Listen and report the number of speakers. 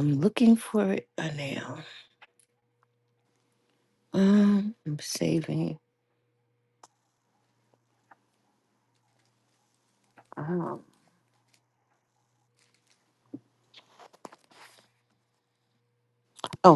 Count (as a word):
one